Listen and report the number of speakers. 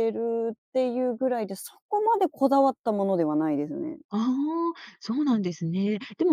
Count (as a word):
two